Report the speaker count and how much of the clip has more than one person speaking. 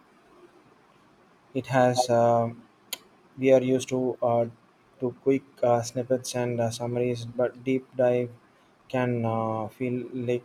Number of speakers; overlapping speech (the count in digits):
1, no overlap